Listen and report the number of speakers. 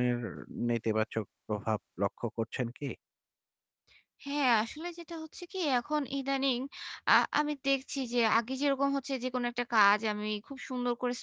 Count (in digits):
2